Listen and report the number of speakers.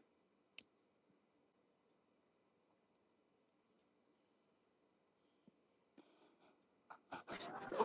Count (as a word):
zero